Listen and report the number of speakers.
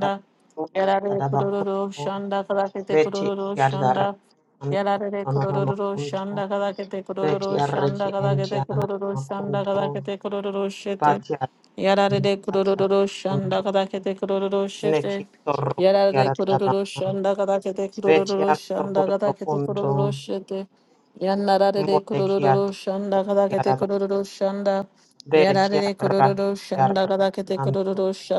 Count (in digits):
2